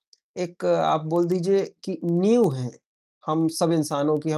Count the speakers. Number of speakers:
1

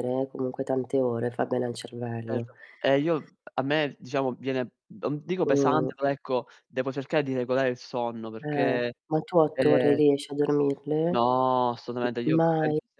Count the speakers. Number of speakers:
2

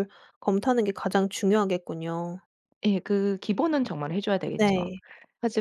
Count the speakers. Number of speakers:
2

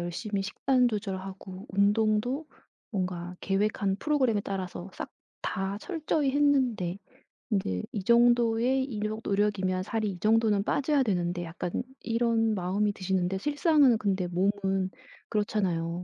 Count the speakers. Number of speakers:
1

